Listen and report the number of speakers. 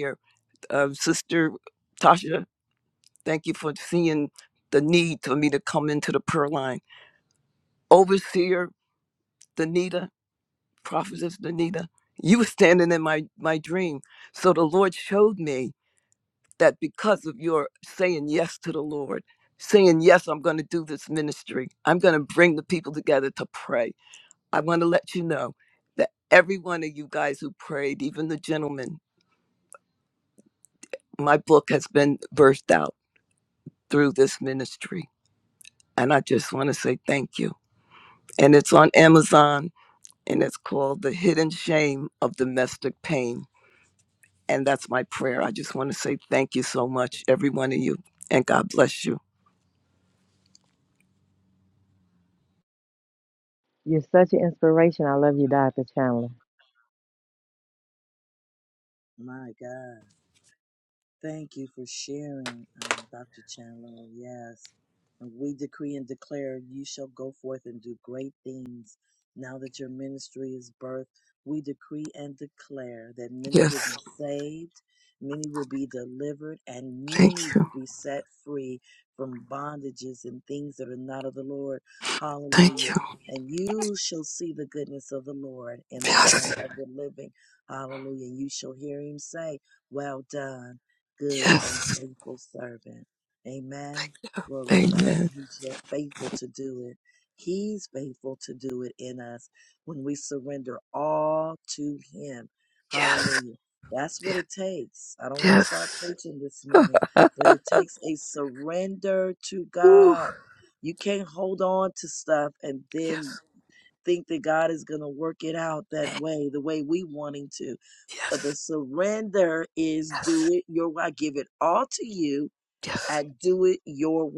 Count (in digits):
3